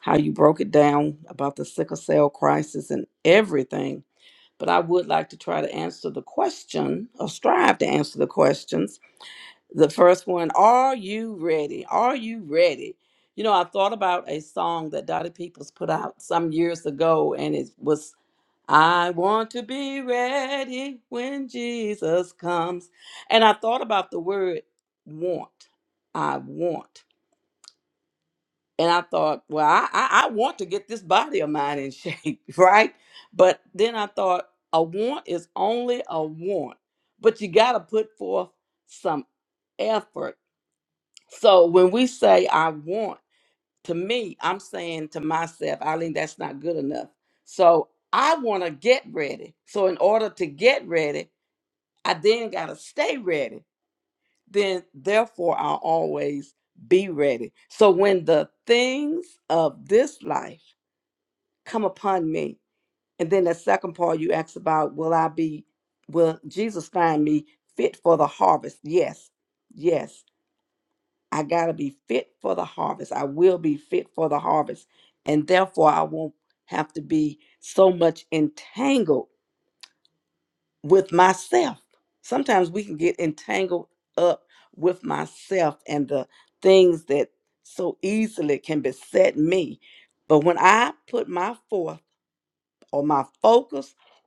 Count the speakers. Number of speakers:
1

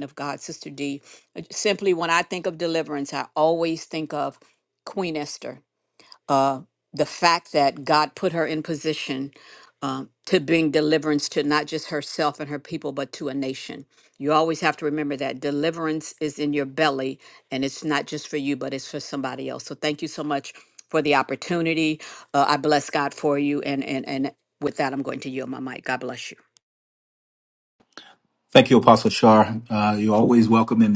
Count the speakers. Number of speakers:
2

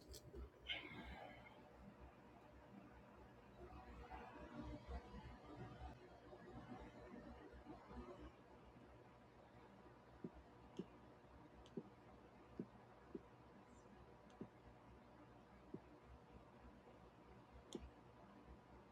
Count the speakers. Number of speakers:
0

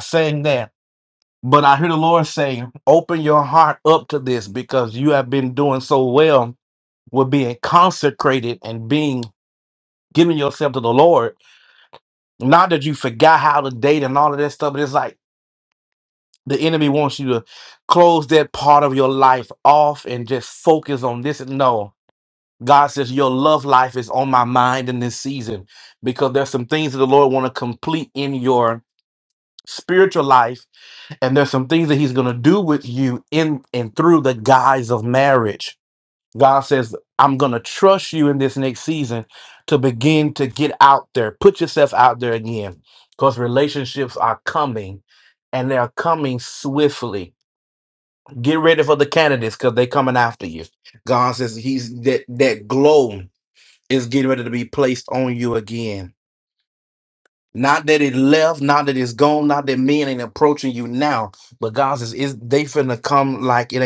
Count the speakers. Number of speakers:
1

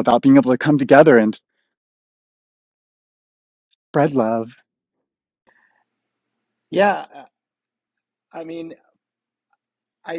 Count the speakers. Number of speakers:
2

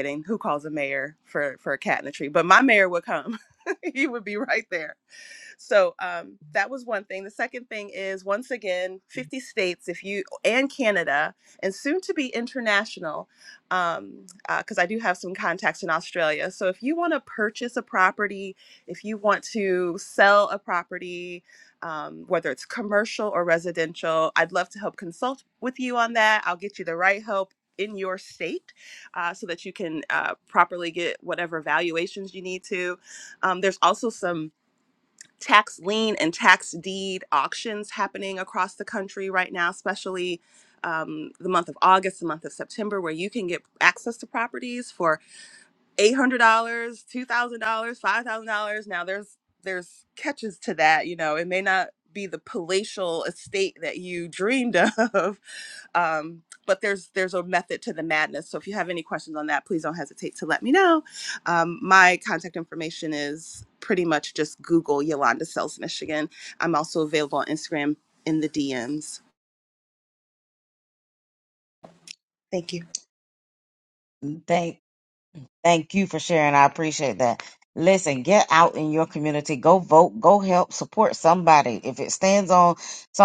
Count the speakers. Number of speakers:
2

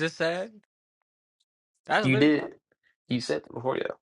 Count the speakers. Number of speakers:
2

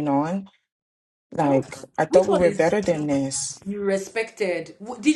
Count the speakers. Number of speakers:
2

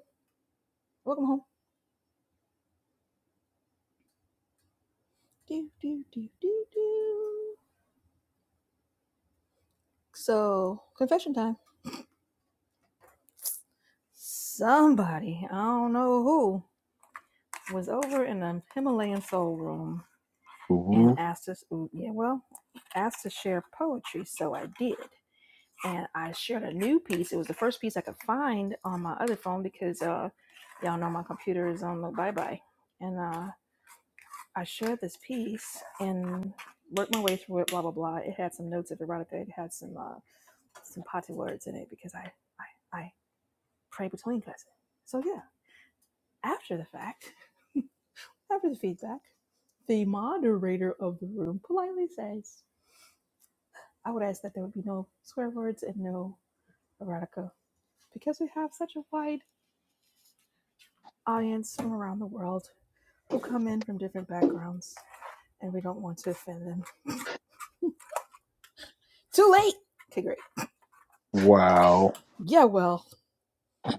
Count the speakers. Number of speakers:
2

